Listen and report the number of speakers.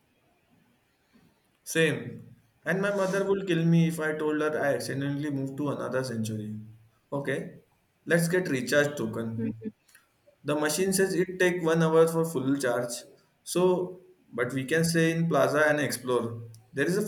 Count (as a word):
one